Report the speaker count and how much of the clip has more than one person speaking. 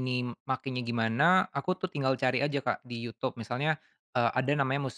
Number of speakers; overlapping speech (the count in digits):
1, no overlap